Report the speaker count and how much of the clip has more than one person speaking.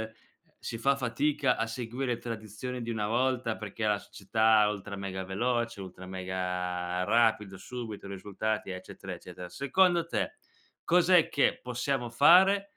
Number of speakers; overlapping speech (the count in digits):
1, no overlap